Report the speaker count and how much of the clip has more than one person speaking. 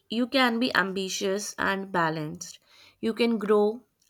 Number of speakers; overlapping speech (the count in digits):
1, no overlap